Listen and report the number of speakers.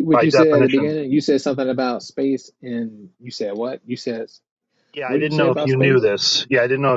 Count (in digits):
2